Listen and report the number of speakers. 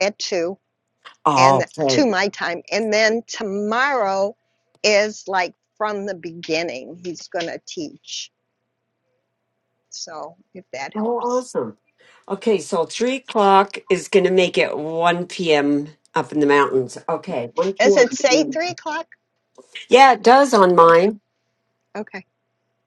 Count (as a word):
two